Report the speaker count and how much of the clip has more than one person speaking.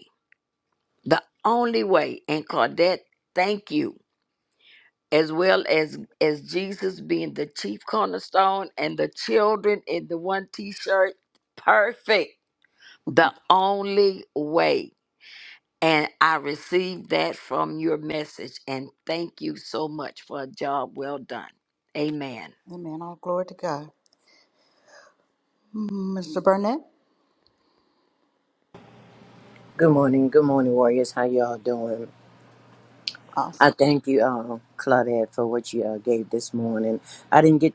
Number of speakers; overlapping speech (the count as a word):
three, under 1%